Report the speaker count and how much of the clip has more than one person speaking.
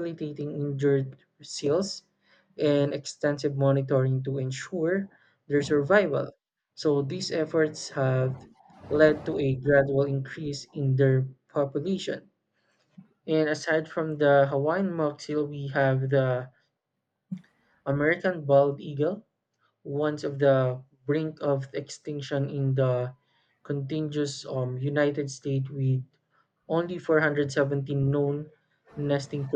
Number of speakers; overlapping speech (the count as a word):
one, no overlap